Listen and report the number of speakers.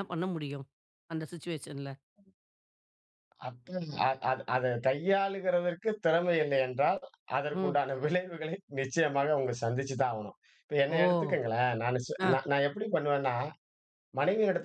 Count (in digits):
2